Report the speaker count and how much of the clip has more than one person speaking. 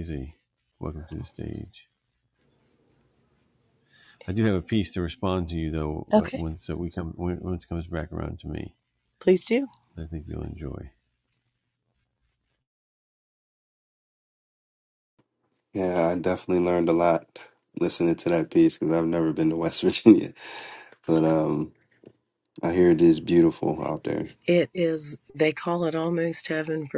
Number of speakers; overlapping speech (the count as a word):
three, about 1%